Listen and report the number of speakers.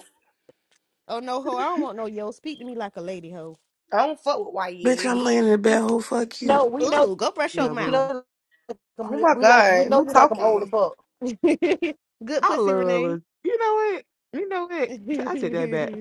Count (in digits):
5